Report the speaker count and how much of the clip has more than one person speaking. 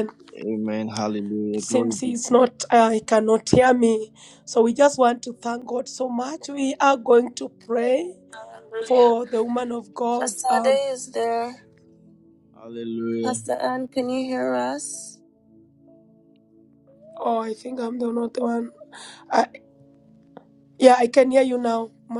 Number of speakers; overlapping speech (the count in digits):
3, about 8%